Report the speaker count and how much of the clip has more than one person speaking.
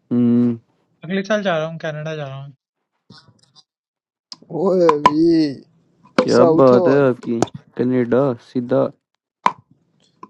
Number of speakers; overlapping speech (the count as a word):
three, about 7%